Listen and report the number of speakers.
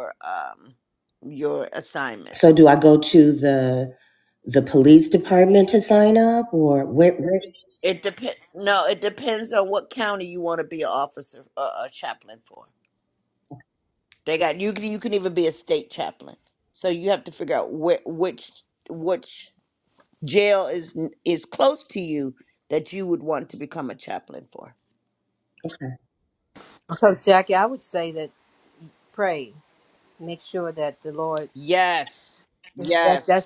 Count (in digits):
3